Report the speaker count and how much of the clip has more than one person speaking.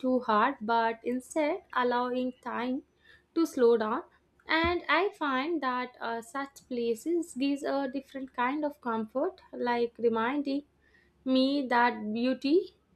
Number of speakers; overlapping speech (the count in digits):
1, no overlap